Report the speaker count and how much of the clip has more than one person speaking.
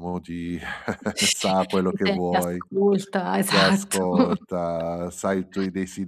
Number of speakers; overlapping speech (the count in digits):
2, about 20%